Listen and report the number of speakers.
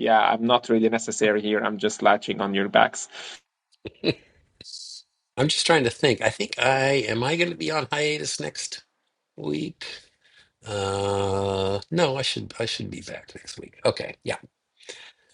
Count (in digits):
2